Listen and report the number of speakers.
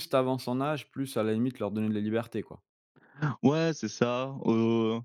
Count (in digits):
2